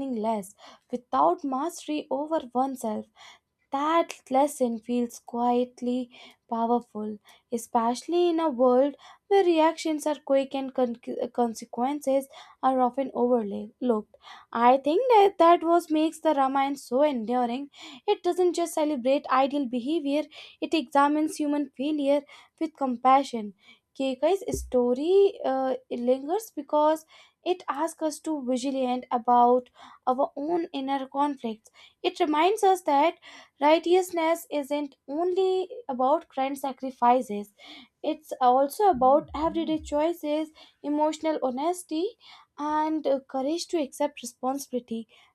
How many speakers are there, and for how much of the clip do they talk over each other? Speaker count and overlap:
1, no overlap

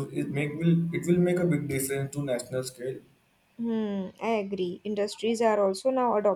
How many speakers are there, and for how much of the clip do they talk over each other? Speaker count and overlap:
2, no overlap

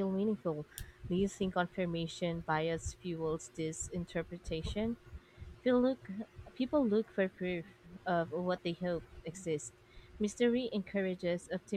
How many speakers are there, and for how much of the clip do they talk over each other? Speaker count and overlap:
1, no overlap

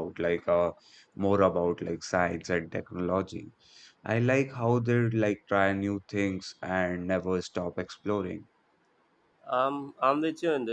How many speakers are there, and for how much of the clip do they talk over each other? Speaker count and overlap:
2, no overlap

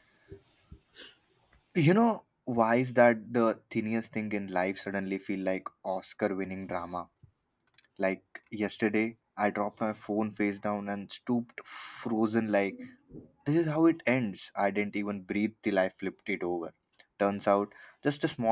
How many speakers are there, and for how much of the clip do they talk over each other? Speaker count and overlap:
1, no overlap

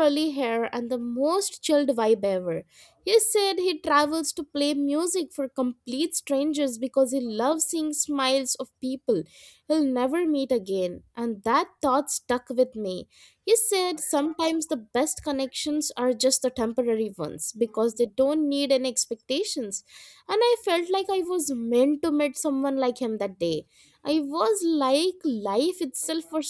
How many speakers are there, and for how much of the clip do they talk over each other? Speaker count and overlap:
1, no overlap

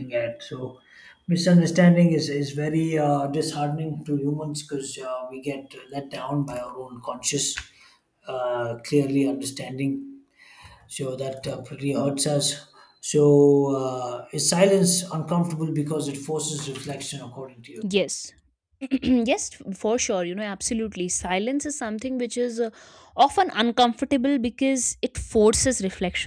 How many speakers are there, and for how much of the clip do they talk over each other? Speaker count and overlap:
2, under 1%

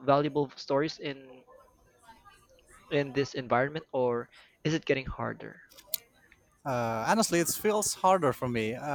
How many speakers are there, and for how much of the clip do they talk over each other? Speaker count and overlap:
2, no overlap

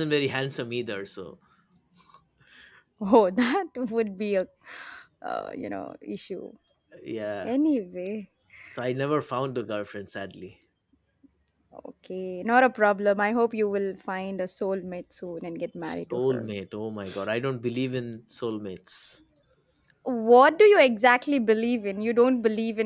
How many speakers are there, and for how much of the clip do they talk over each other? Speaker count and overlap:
2, about 3%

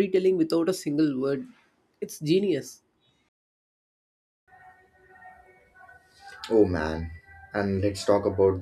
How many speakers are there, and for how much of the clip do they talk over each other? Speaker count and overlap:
2, no overlap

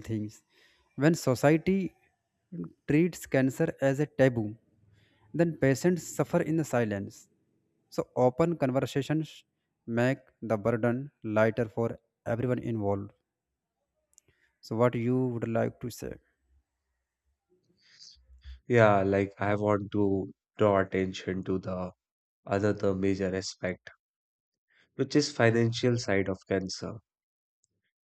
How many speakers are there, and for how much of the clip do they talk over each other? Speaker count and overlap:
2, no overlap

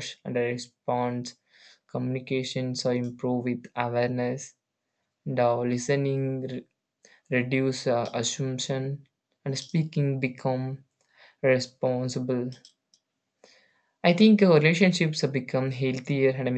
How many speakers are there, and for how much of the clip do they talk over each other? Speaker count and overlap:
1, no overlap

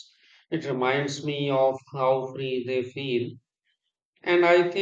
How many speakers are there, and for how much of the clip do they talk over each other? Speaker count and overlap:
1, no overlap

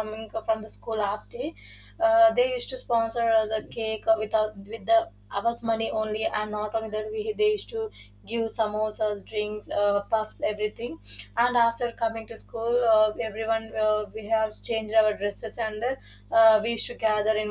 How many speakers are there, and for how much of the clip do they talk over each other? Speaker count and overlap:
1, no overlap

